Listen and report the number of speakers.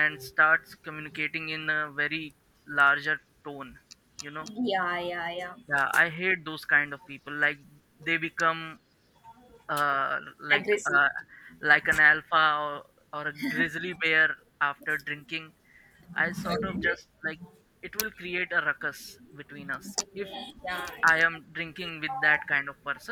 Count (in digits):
2